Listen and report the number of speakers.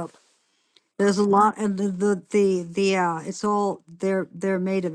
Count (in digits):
1